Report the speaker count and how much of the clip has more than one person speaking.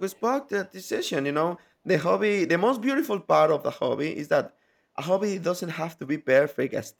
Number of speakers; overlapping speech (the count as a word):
one, no overlap